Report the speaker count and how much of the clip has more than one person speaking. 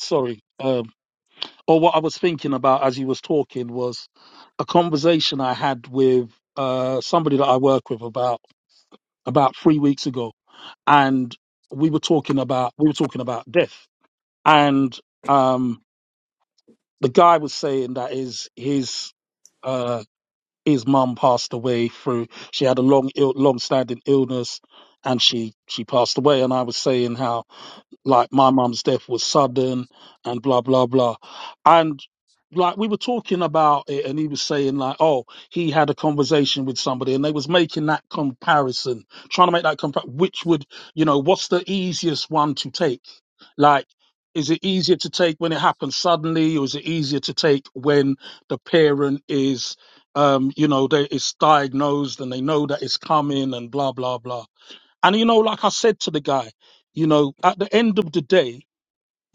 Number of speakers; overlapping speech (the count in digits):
1, no overlap